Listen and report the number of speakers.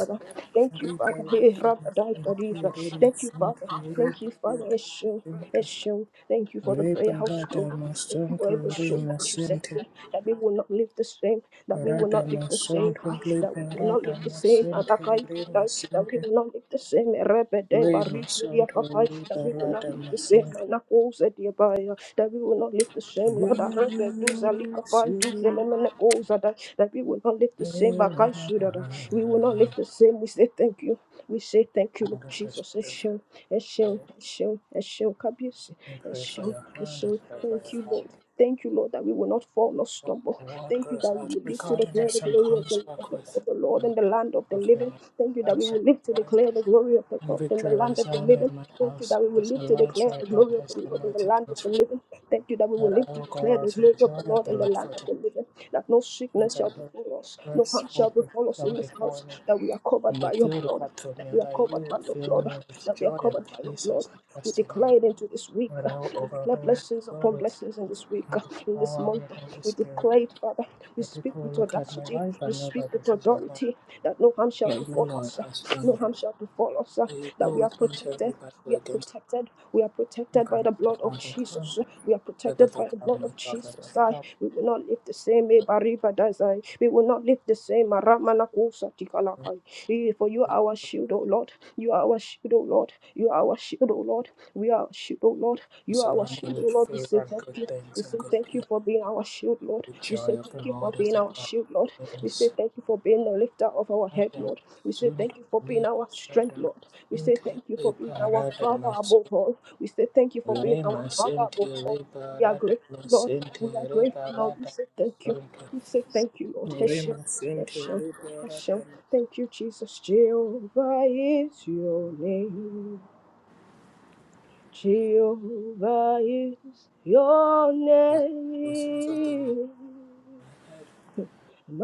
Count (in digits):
2